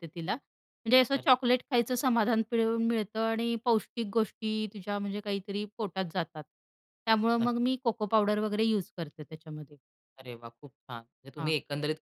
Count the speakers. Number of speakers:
2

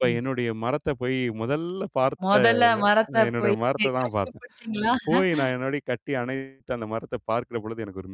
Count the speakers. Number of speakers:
2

